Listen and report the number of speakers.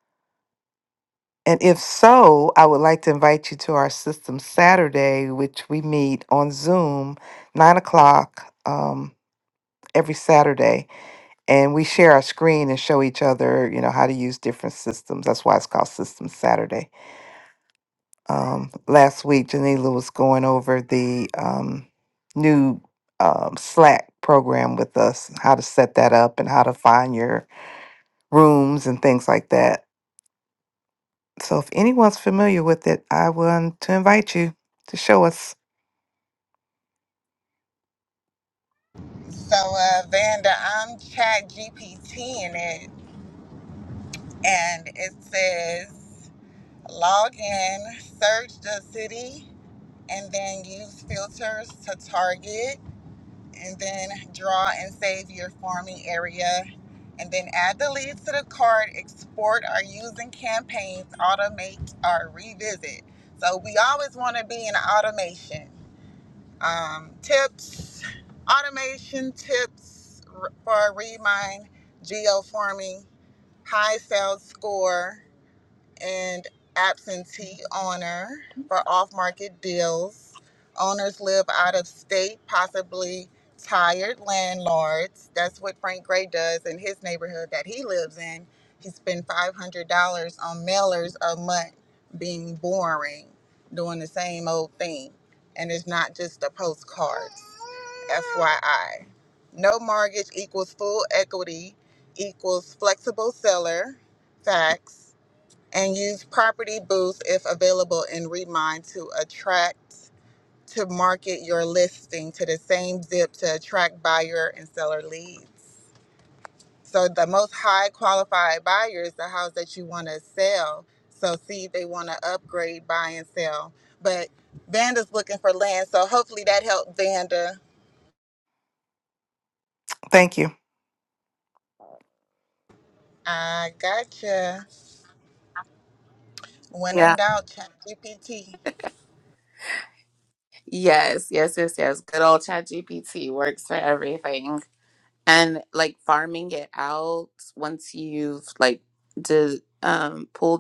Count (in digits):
3